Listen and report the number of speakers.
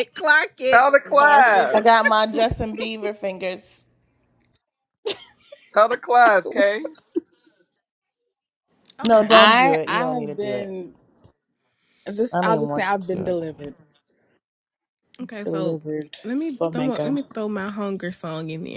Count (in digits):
4